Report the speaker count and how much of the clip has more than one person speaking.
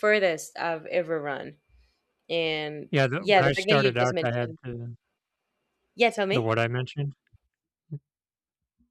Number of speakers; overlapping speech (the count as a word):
two, about 17%